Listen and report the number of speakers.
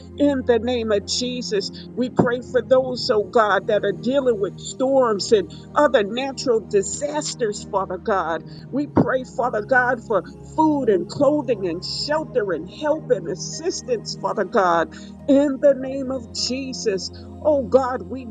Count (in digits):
1